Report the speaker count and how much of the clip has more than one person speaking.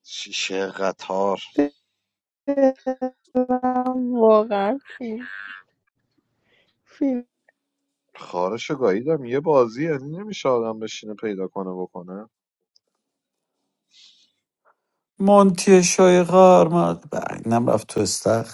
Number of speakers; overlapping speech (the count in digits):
3, no overlap